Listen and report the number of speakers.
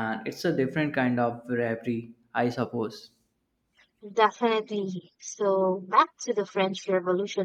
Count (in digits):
2